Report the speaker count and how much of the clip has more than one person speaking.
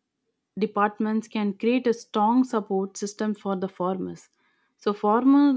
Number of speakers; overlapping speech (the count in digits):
1, no overlap